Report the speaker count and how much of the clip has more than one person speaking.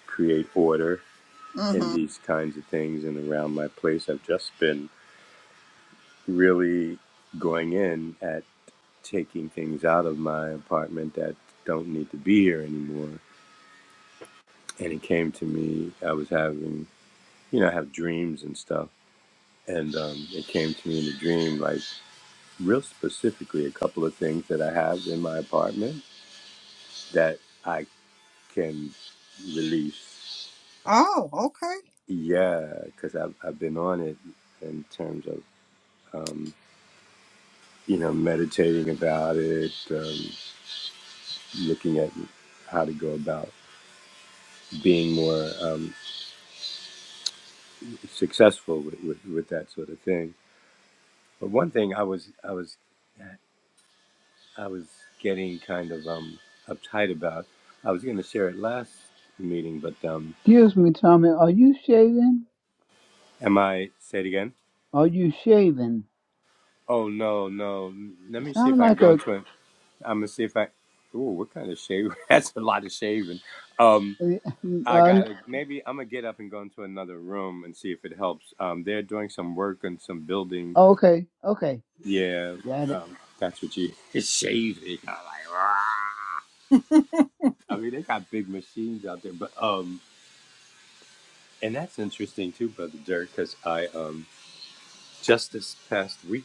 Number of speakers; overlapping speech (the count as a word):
three, about 1%